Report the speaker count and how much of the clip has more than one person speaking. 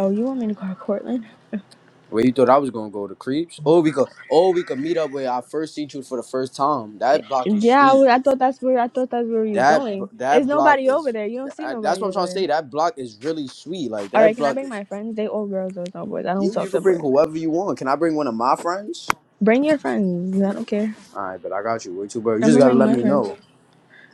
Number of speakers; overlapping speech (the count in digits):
2, about 19%